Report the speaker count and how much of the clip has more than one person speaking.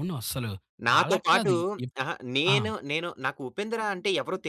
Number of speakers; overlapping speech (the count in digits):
2, about 17%